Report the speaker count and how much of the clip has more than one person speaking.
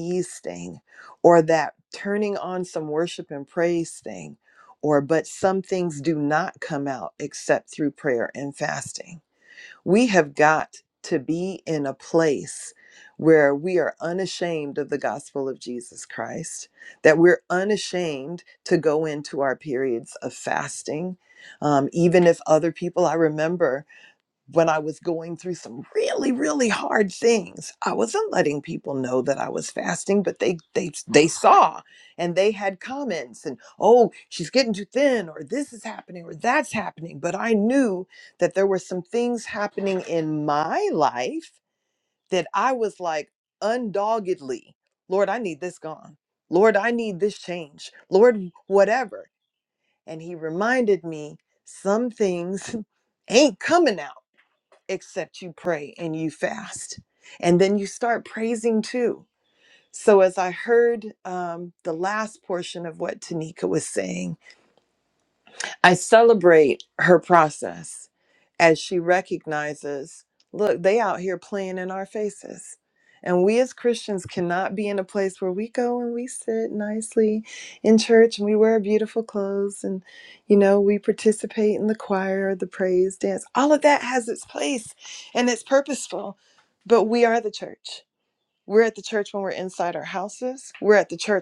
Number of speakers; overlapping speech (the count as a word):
one, no overlap